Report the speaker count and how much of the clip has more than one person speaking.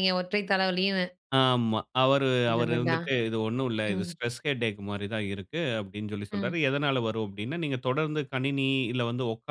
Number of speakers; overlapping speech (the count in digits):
2, about 11%